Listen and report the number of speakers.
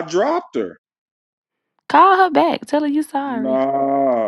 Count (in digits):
2